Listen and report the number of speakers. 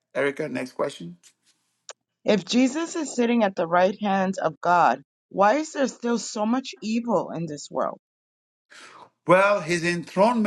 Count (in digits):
2